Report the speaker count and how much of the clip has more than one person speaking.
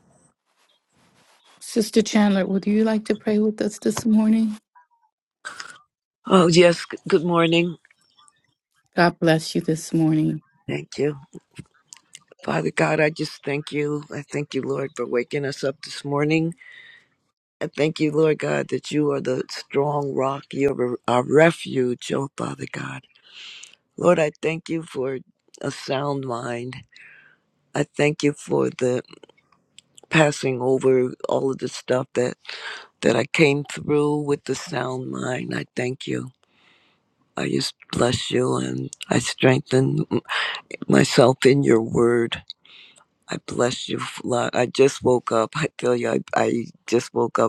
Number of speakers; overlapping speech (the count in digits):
2, no overlap